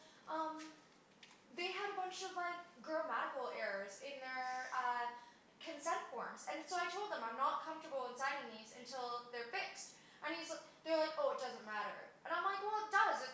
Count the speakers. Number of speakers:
1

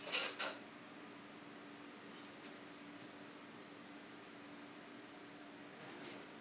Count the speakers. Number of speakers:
0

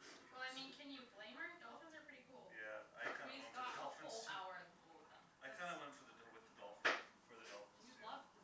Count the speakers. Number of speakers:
3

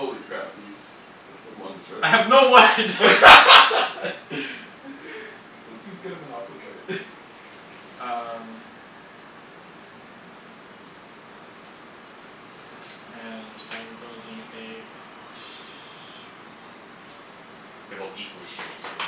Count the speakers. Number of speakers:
3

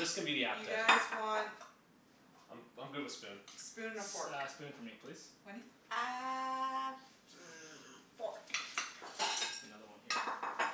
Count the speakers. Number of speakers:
4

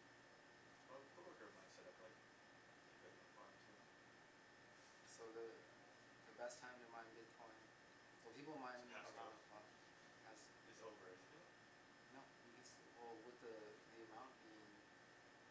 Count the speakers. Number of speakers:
2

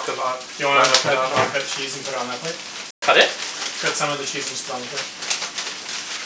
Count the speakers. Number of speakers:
2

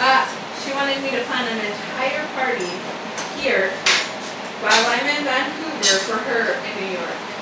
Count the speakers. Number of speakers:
1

